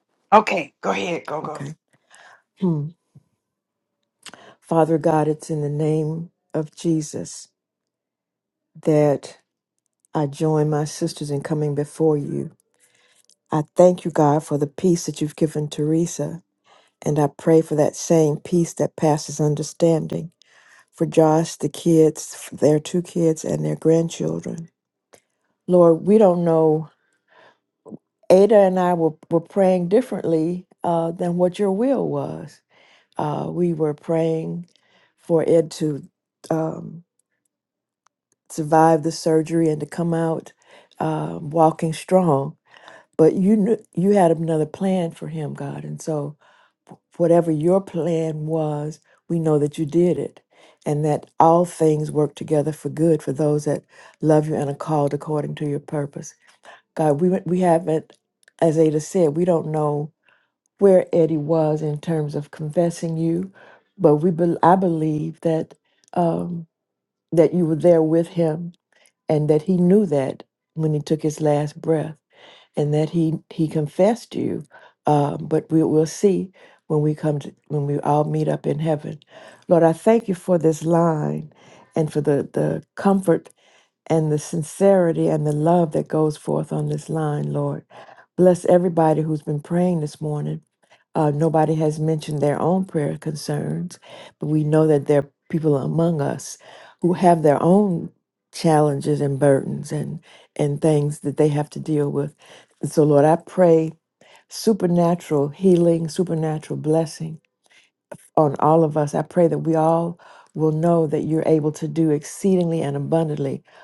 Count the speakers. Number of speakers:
2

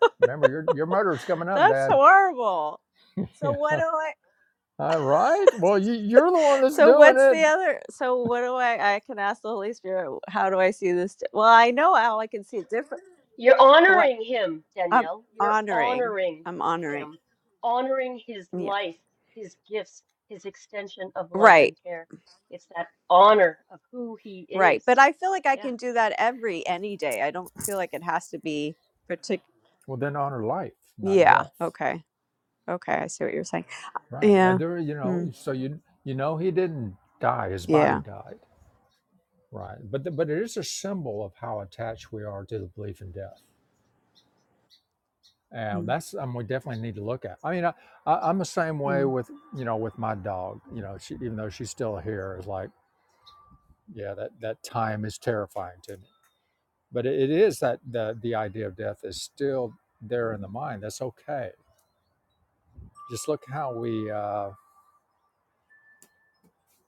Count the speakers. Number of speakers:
3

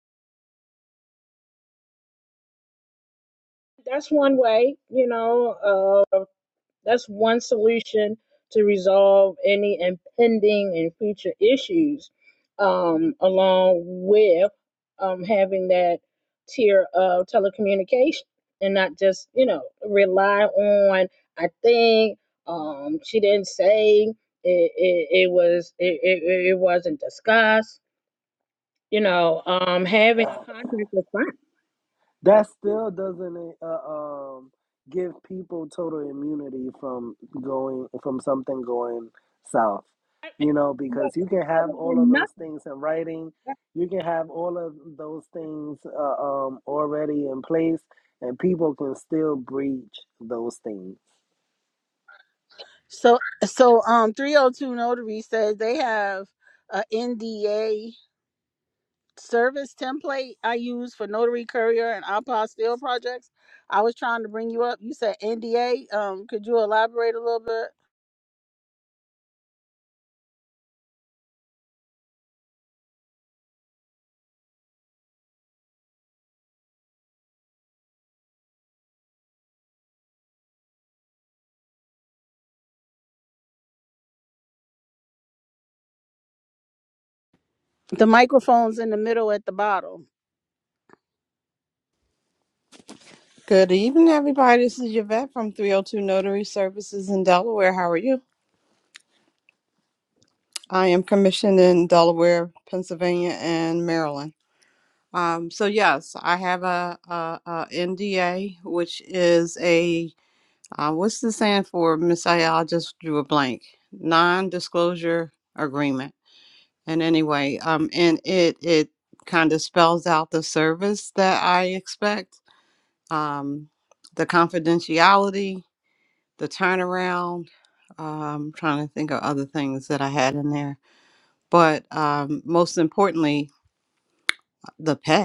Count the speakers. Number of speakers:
4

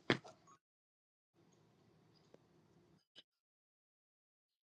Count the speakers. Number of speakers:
0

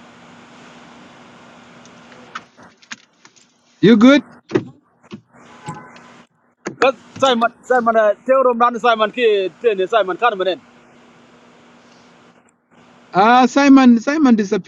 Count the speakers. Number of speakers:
2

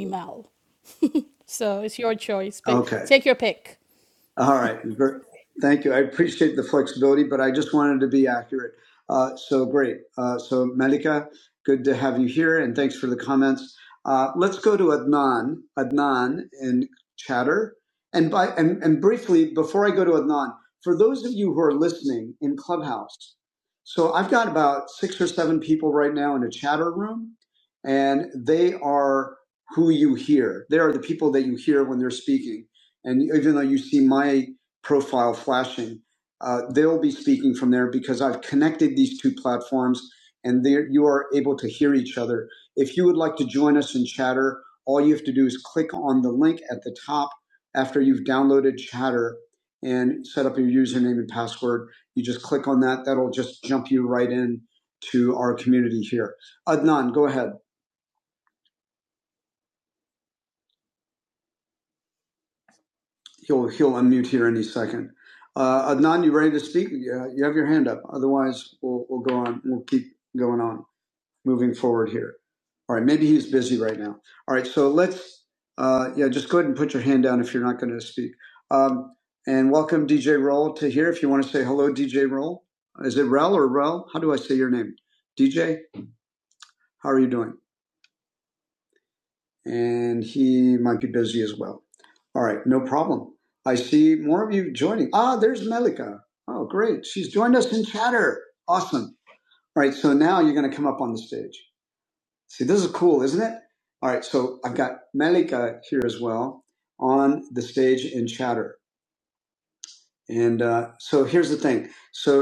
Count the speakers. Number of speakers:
2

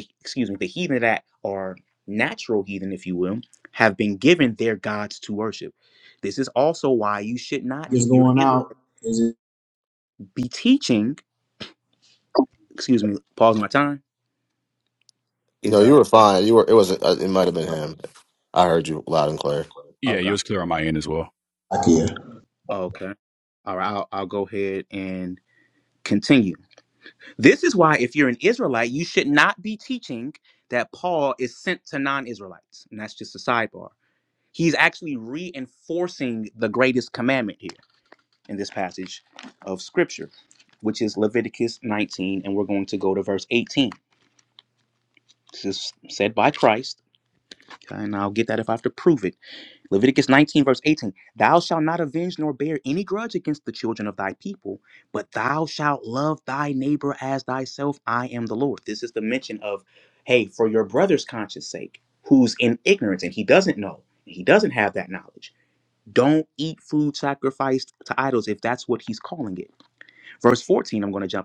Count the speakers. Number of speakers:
4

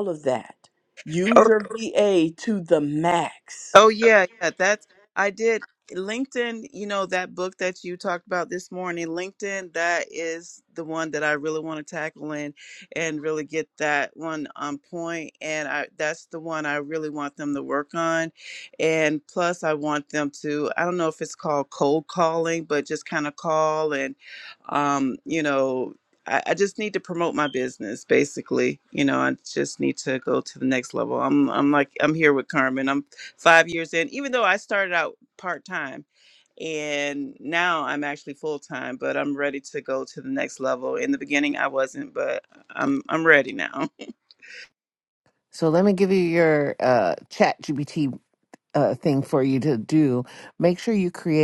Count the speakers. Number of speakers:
3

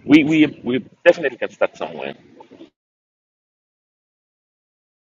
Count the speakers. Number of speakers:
1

